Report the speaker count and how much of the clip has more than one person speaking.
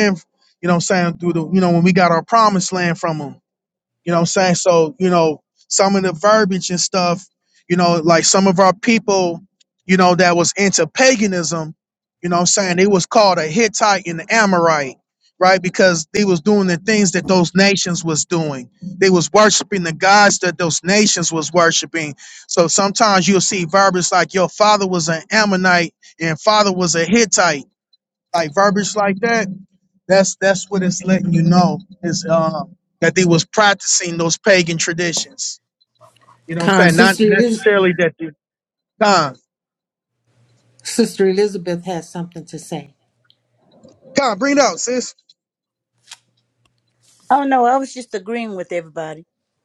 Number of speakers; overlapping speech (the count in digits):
3, about 2%